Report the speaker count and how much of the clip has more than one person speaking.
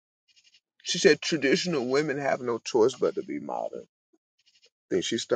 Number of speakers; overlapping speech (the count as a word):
one, no overlap